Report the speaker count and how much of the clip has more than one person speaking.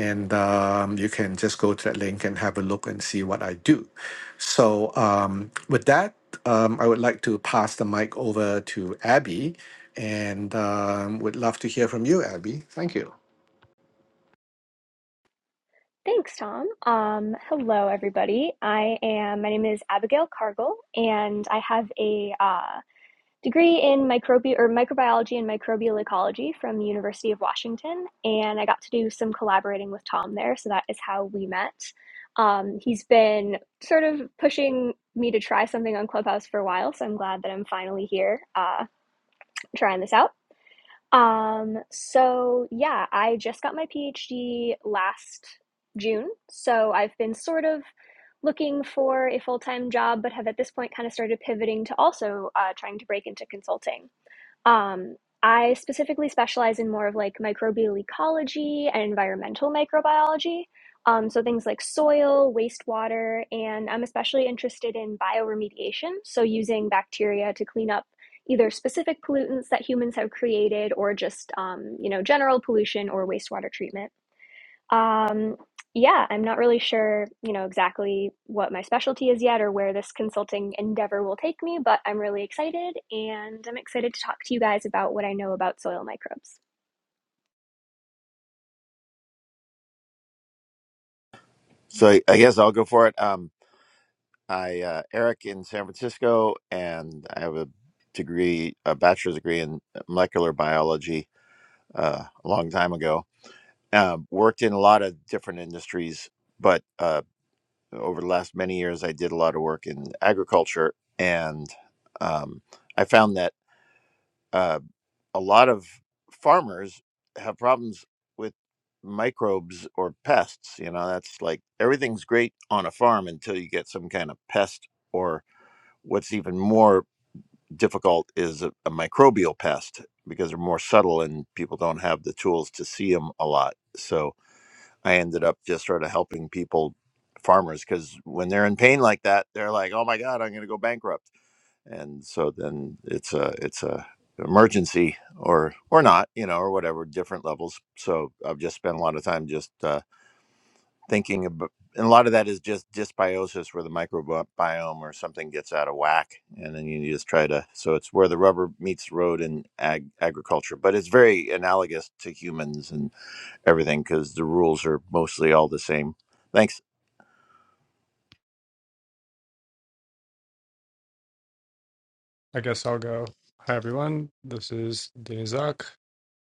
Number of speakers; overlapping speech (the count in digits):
4, no overlap